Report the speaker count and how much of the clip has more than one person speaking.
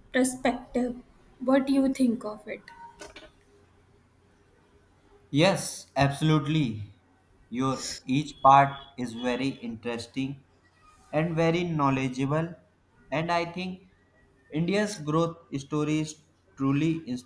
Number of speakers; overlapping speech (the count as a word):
two, no overlap